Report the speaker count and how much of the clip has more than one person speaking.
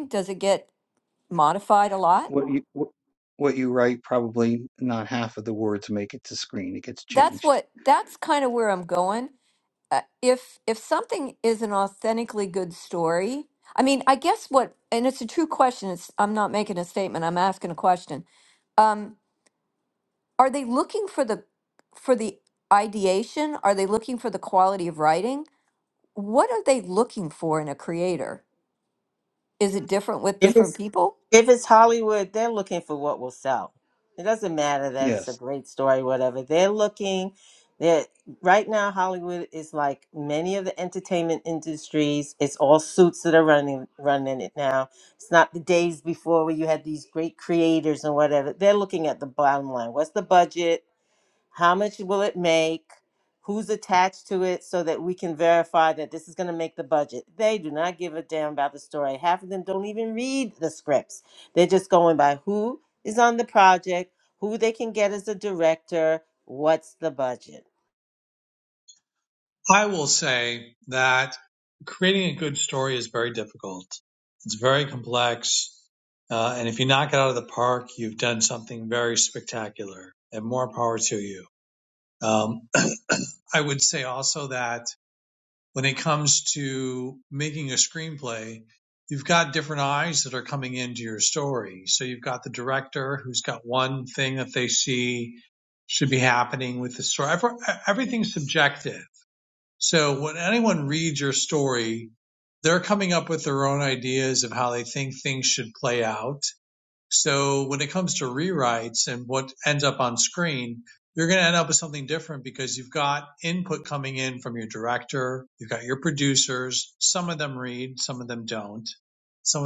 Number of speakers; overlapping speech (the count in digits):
4, about 1%